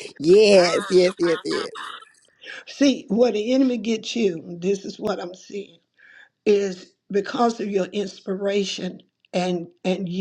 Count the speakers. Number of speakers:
two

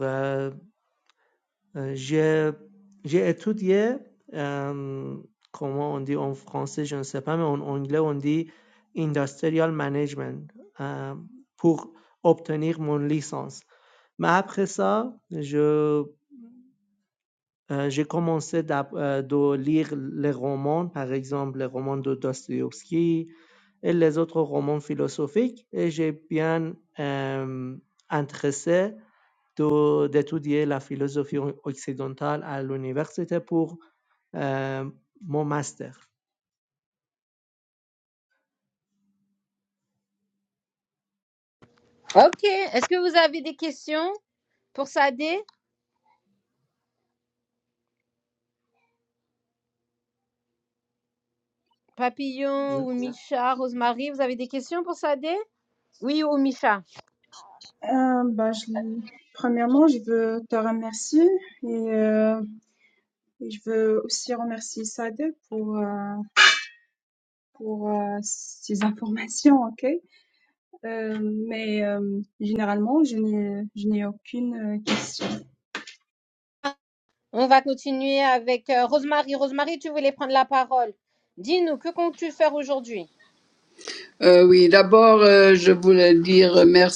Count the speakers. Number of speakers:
four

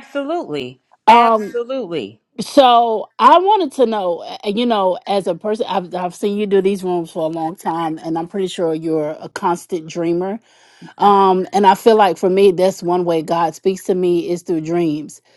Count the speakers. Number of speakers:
two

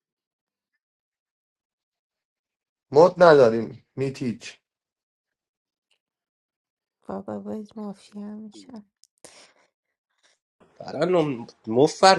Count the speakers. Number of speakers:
three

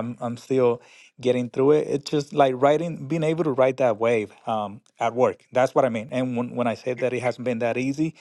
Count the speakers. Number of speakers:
one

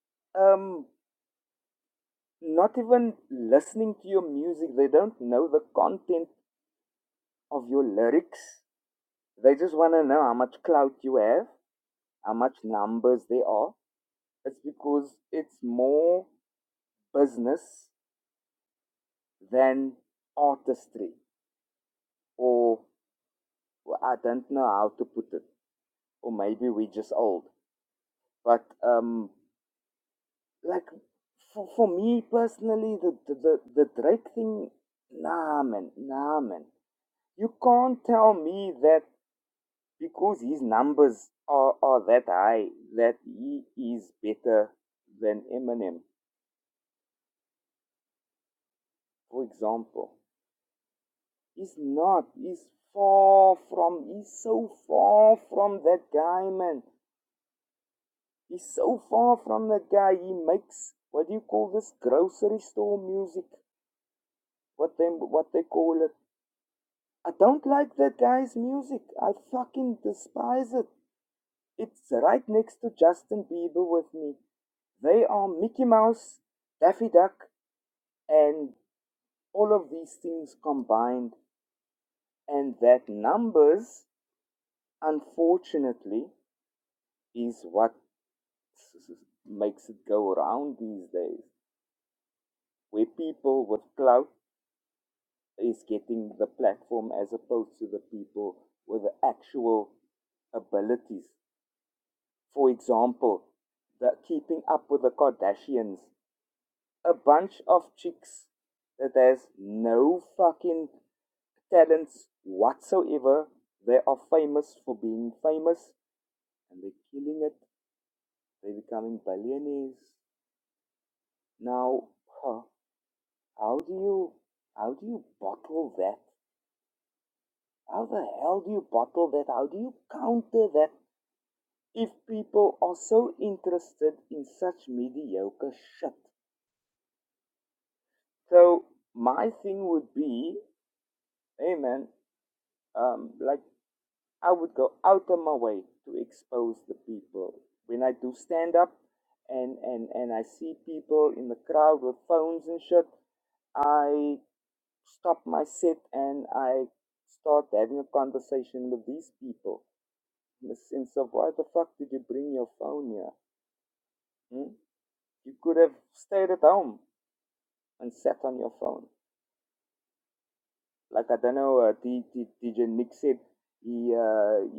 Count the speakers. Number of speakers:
one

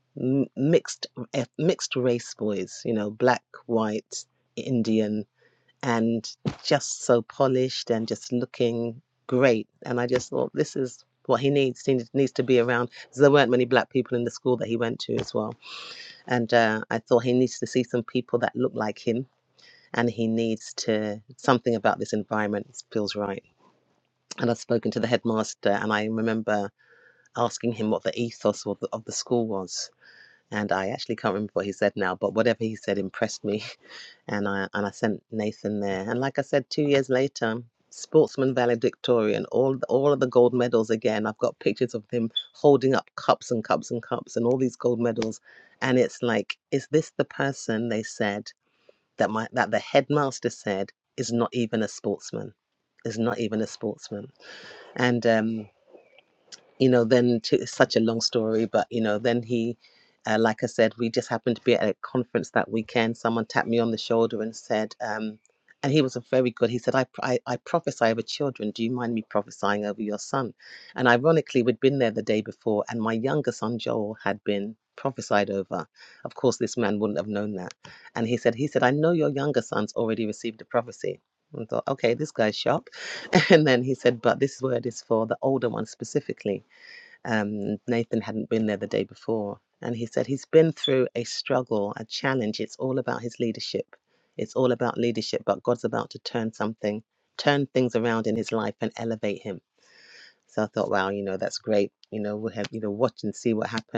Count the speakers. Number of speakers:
one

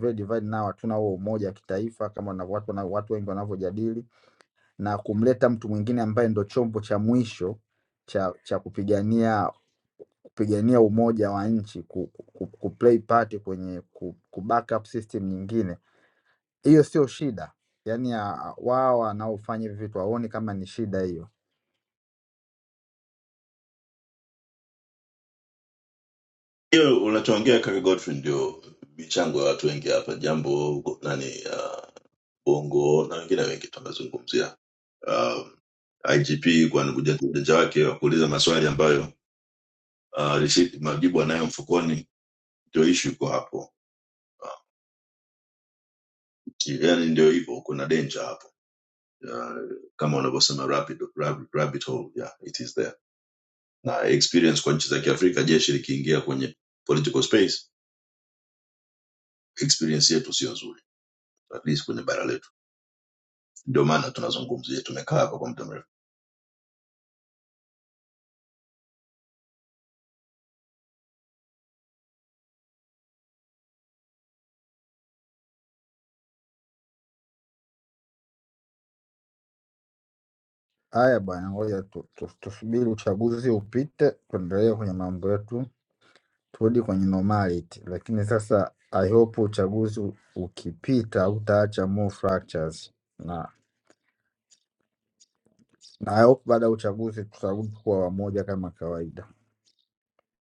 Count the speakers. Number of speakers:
two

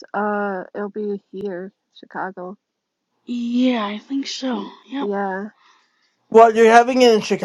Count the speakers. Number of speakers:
three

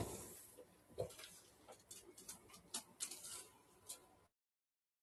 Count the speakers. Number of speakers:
zero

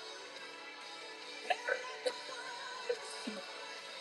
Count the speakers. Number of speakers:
zero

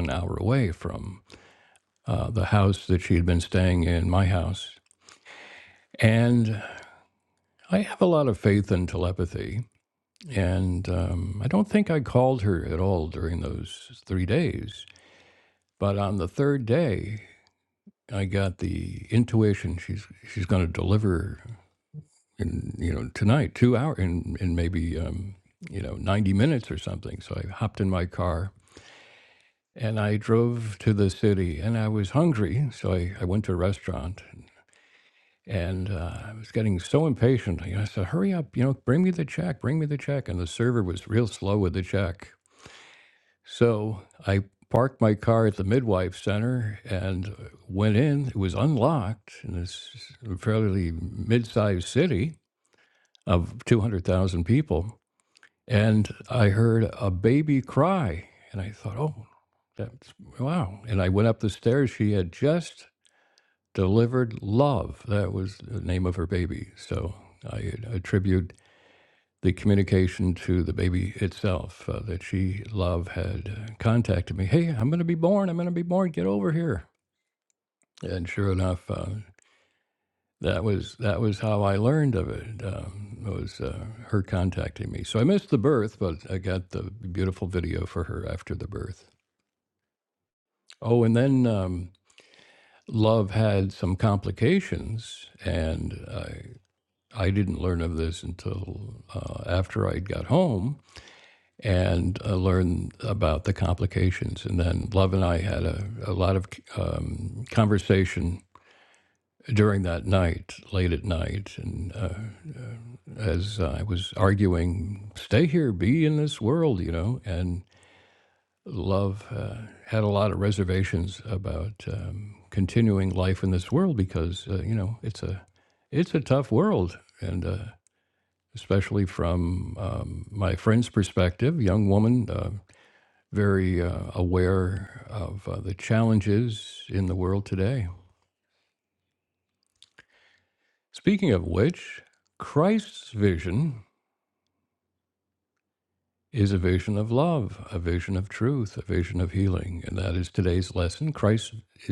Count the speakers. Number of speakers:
one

